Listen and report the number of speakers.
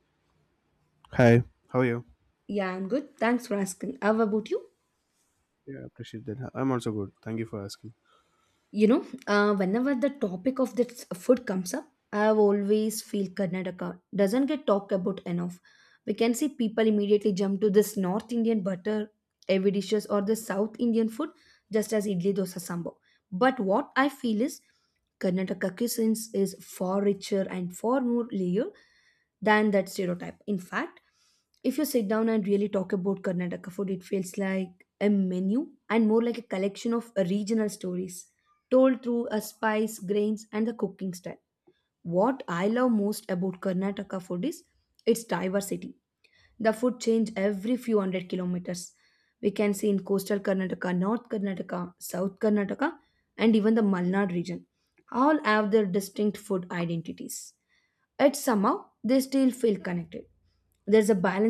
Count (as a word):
two